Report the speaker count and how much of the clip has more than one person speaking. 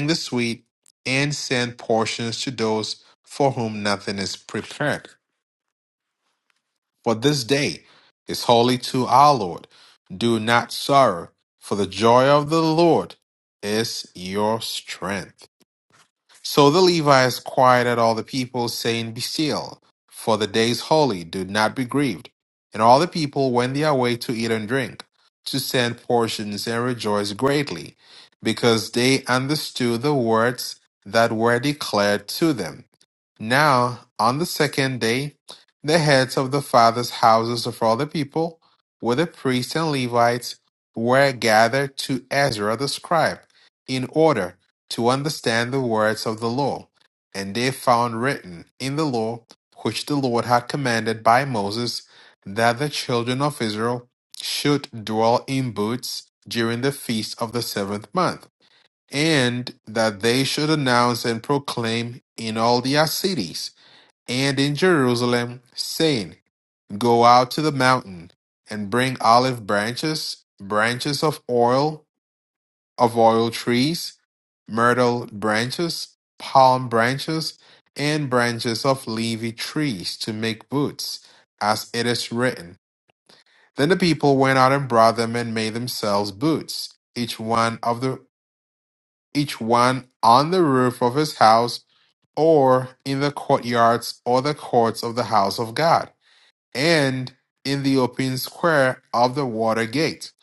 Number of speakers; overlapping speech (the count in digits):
1, no overlap